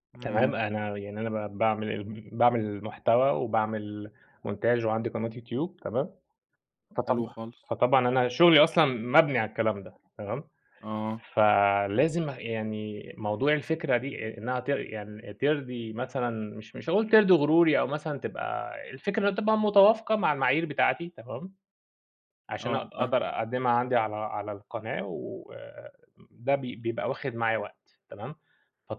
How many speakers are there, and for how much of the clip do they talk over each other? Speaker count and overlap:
2, about 4%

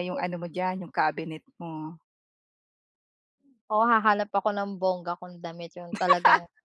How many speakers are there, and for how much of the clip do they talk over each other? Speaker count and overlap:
2, no overlap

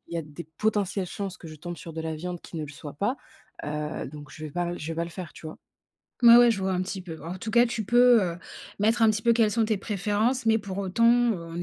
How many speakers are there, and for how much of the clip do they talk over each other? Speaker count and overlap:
2, no overlap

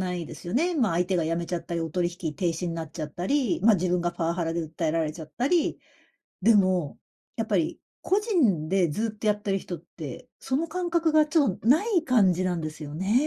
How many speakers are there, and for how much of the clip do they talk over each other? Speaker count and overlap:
1, no overlap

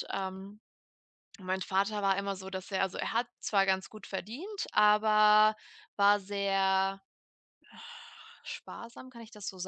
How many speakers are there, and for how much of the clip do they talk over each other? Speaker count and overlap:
1, no overlap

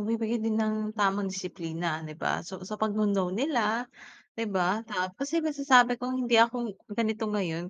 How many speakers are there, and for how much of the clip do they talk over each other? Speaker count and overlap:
1, no overlap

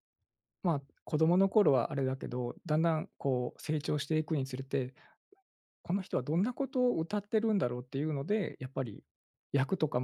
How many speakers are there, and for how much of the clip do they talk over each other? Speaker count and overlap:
1, no overlap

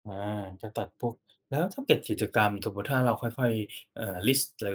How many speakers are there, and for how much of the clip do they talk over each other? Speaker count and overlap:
1, no overlap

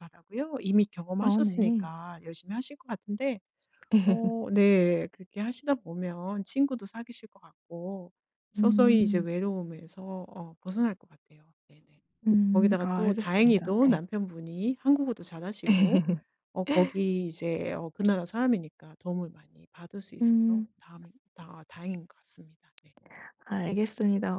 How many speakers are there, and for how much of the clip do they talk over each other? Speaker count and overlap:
2, about 13%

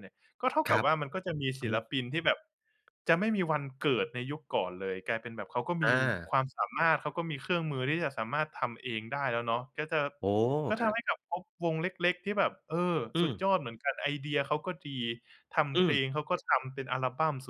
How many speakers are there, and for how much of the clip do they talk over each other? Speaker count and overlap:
2, about 7%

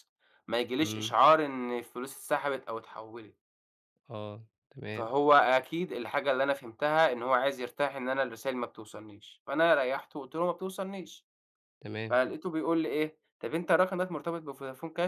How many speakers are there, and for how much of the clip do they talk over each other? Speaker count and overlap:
2, about 3%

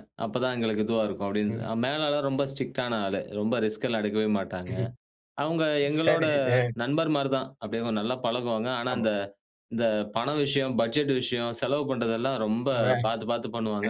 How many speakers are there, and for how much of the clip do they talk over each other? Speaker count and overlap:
2, about 6%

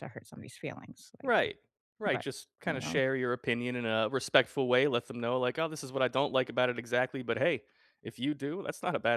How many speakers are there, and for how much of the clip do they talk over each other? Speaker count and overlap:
2, about 6%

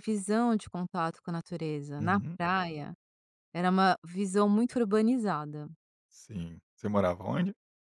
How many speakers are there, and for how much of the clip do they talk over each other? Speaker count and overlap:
2, about 5%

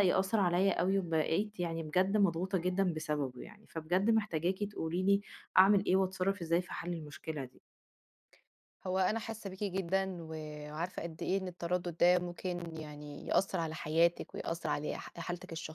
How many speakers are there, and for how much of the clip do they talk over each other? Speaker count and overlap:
2, no overlap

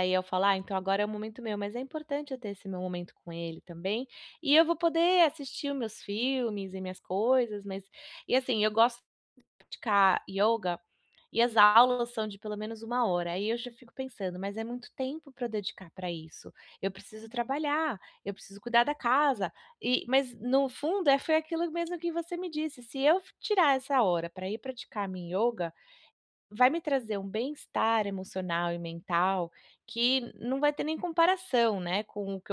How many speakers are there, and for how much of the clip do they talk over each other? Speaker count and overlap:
1, no overlap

